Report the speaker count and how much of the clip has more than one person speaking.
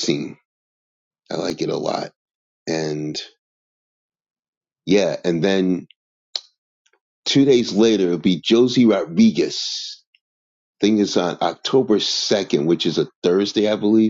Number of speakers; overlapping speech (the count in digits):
1, no overlap